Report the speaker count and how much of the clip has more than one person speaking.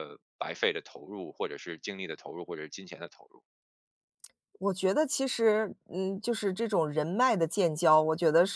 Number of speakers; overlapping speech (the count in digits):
2, no overlap